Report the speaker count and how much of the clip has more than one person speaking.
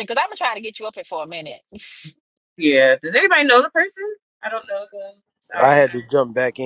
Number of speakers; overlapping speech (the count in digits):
3, about 3%